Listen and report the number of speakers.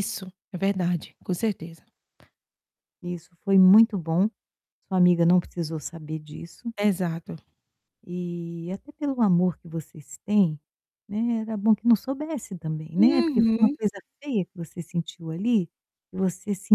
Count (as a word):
two